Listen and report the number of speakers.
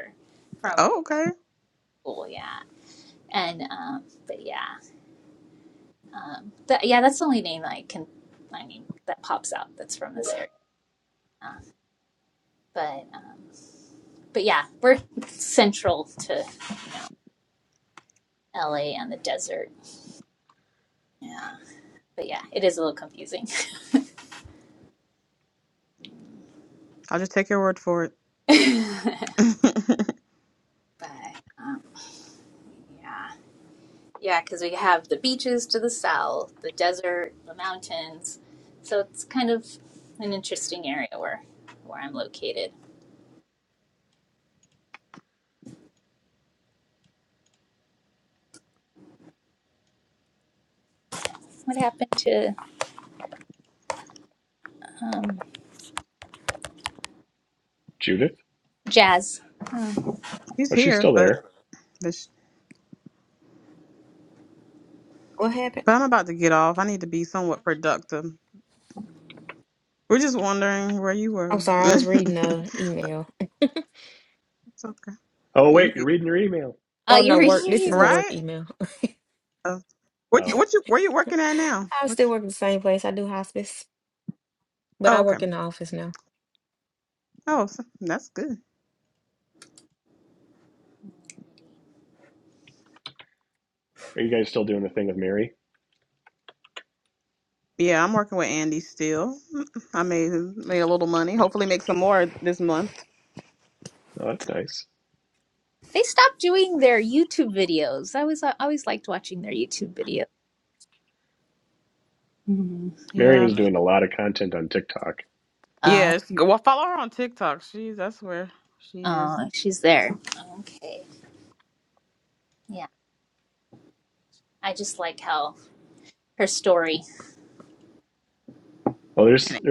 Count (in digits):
4